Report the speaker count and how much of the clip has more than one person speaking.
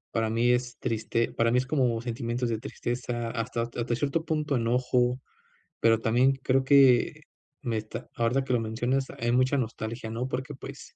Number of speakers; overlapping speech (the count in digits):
1, no overlap